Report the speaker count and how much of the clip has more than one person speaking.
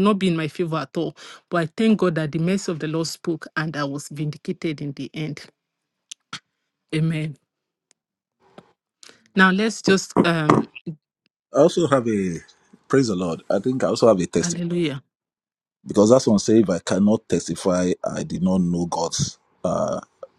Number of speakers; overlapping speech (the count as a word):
two, about 1%